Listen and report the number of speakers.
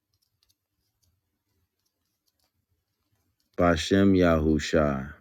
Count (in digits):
1